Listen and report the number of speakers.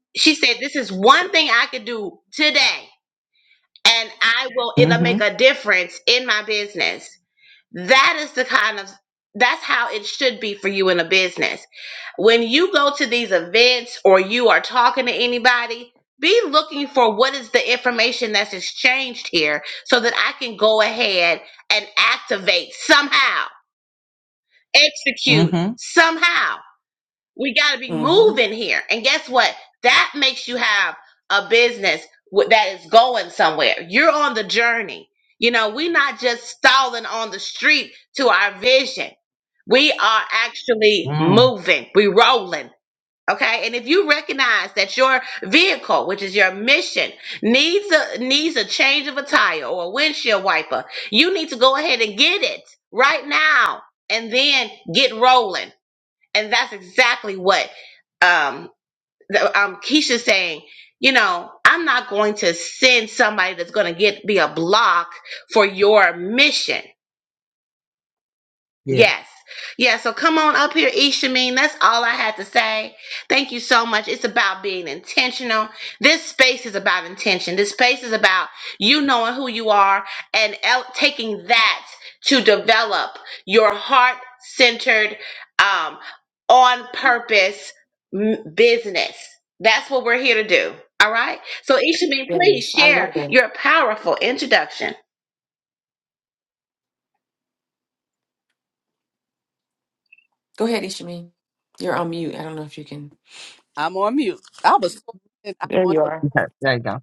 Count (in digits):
4